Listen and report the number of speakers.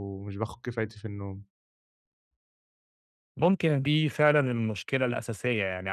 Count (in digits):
2